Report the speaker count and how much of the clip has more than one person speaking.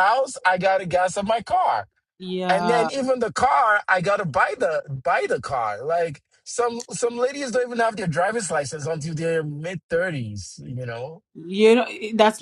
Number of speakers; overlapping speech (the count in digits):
2, about 3%